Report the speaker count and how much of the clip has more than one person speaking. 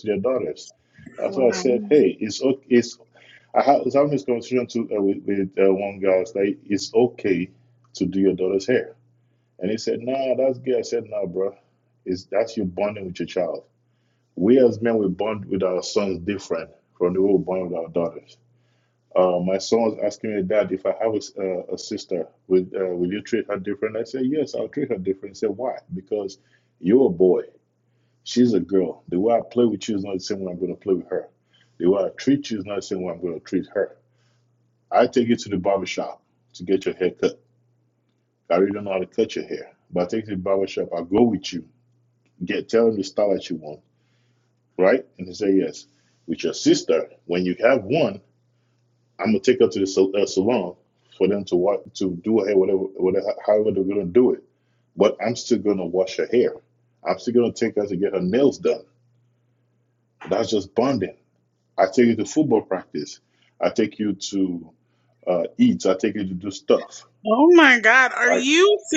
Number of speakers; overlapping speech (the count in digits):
2, about 1%